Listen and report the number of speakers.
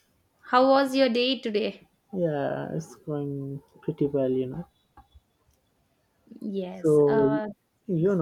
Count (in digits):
2